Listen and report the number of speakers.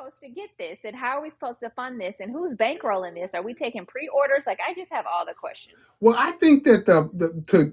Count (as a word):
two